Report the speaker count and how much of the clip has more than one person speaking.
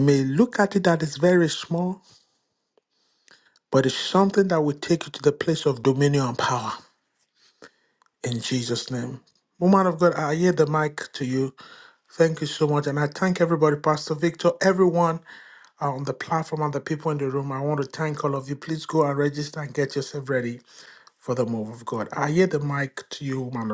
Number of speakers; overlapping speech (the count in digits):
1, no overlap